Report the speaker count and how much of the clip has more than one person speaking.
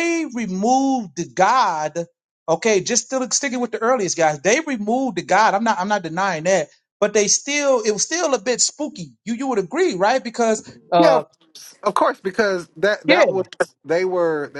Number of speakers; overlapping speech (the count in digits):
2, about 3%